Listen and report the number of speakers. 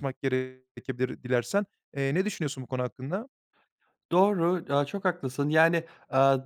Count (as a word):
two